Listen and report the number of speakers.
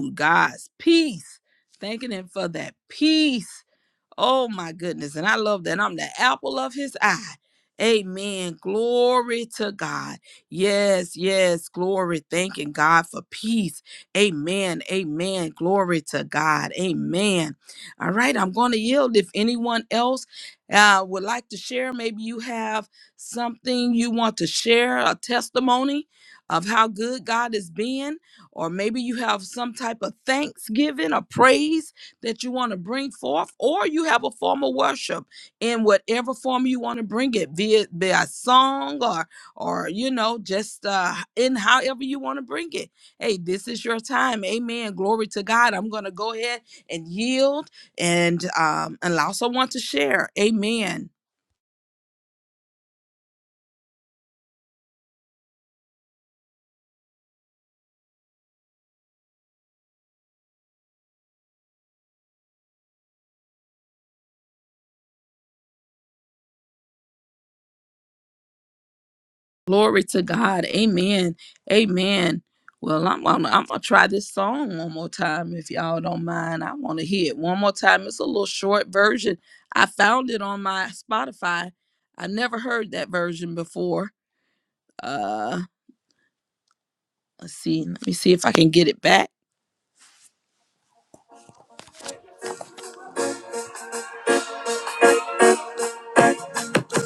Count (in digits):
1